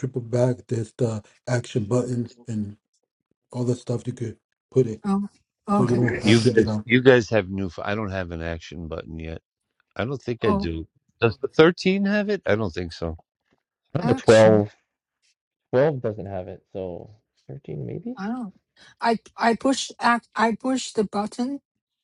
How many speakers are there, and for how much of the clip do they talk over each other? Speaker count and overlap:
four, about 8%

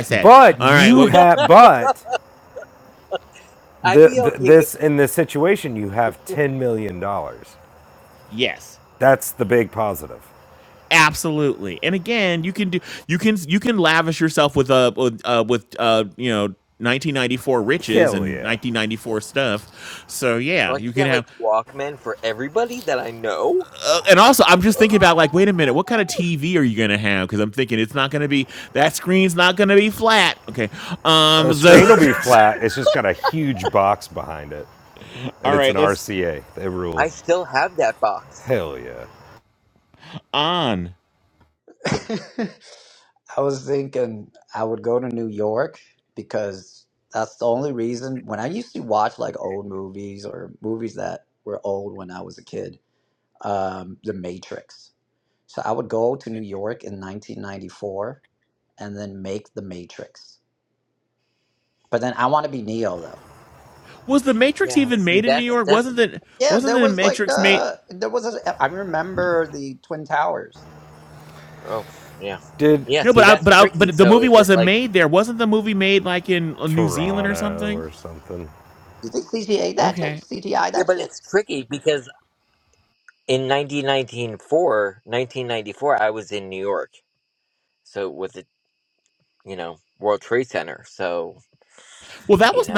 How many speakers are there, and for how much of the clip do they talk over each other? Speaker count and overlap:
four, about 11%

